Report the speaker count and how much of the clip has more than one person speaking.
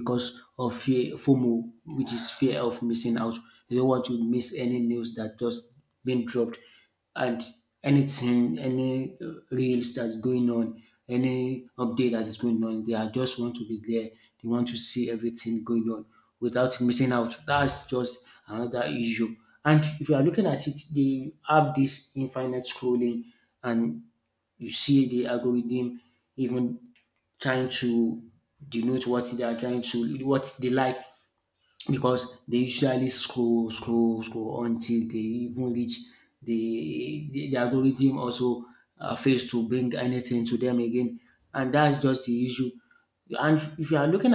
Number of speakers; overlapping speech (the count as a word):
one, no overlap